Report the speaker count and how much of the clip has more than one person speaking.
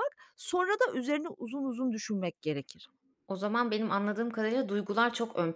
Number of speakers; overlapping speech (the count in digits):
2, no overlap